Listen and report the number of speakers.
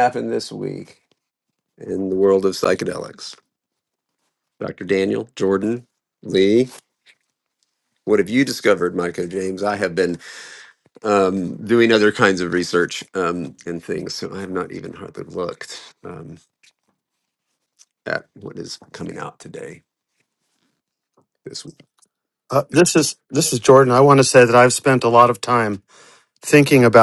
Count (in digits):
2